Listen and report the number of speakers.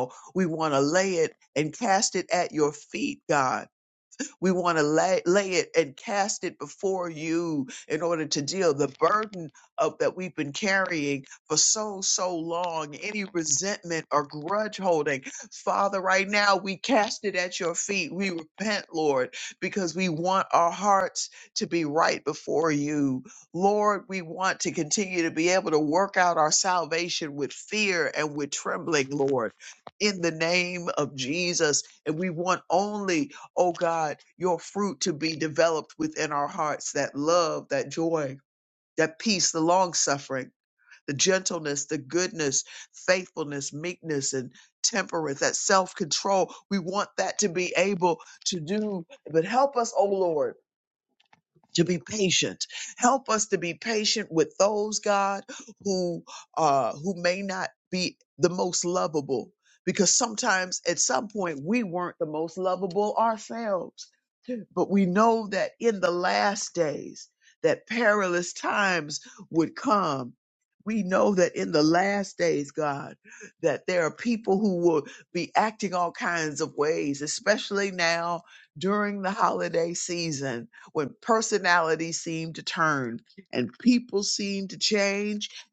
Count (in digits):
1